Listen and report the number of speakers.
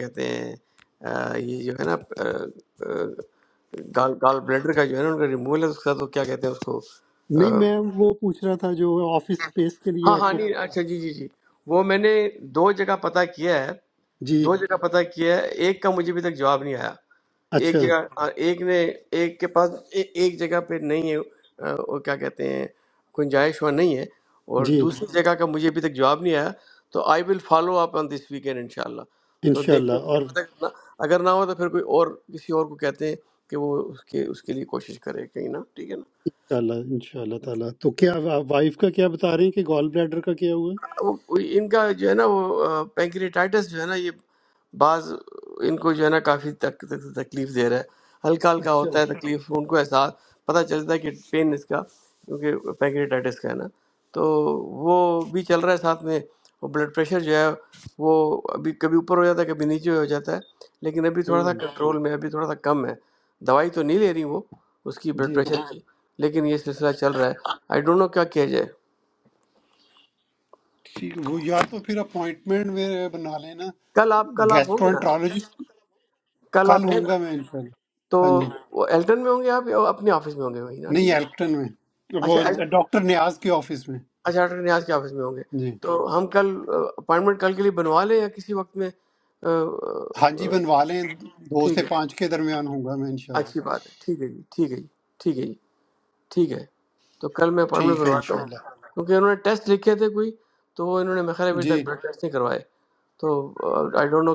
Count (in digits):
2